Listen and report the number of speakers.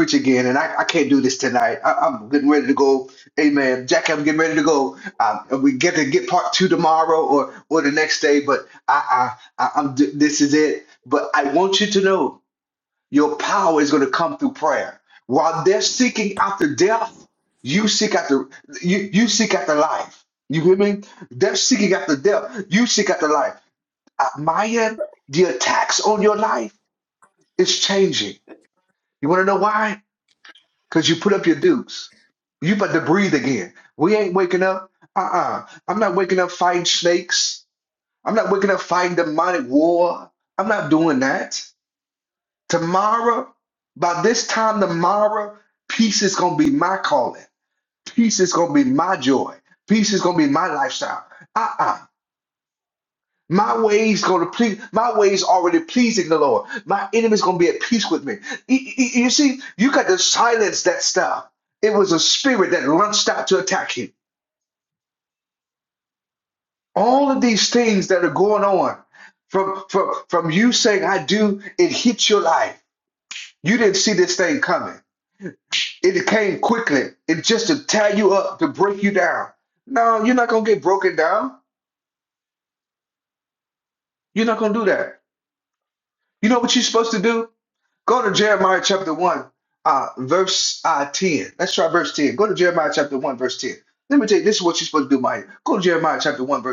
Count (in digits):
1